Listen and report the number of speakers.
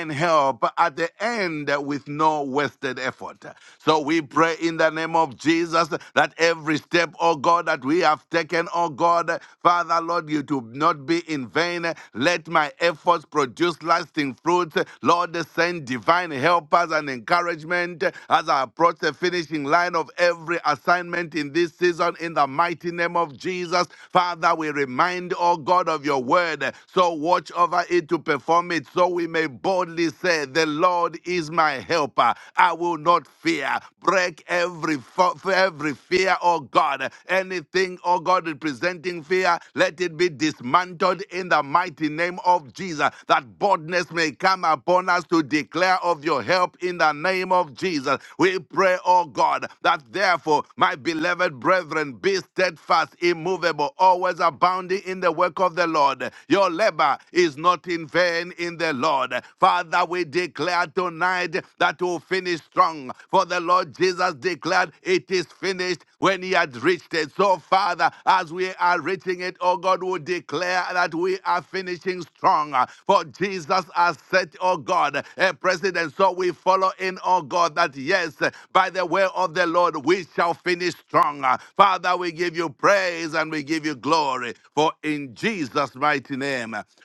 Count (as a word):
one